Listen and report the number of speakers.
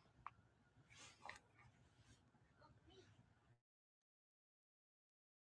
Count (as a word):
zero